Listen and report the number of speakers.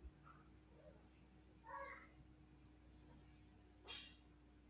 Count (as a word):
zero